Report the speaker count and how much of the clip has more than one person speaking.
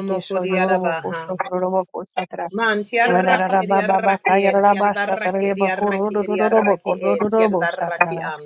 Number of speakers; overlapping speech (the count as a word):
two, about 80%